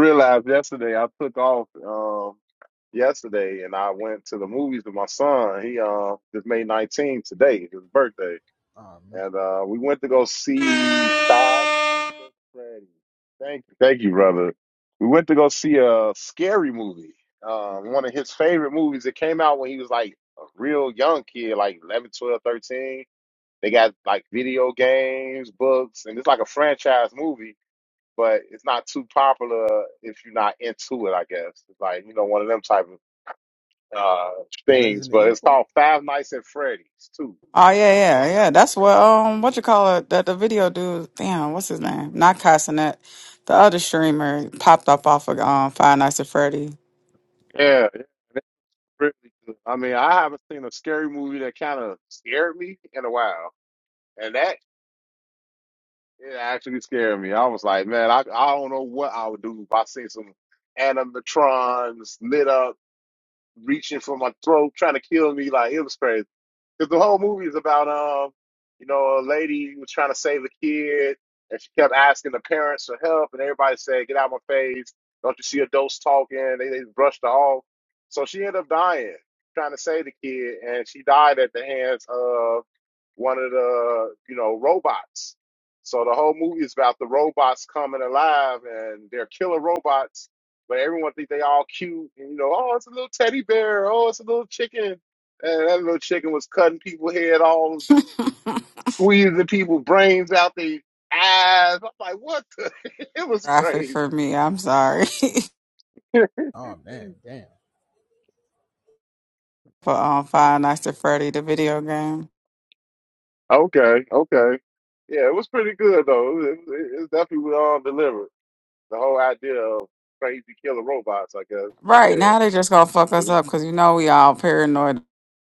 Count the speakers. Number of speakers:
three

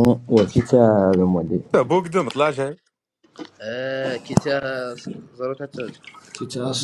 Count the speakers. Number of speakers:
three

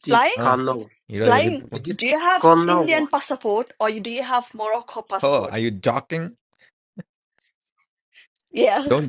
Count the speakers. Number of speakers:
three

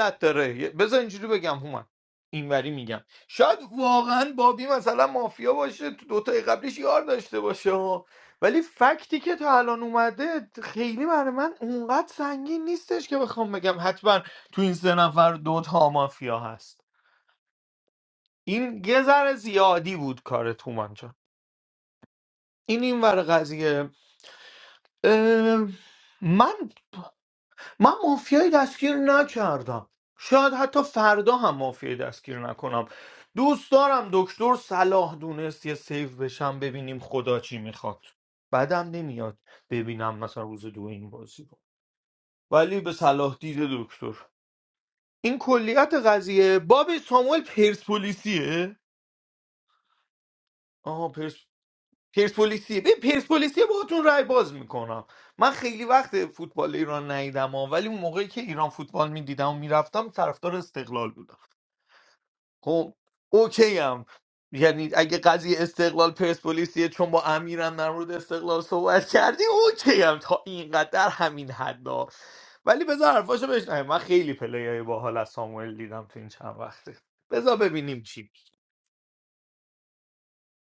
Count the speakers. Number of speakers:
one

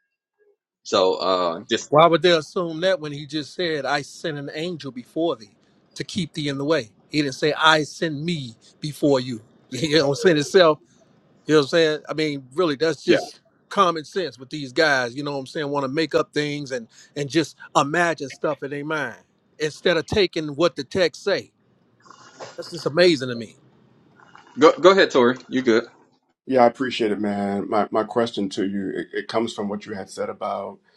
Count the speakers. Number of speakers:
three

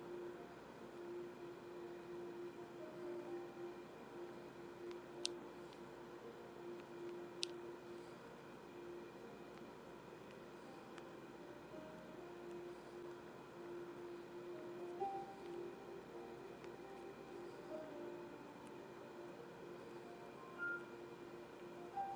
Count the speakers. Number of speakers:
zero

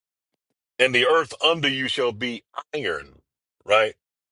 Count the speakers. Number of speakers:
one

